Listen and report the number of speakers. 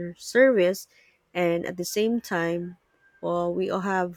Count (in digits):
1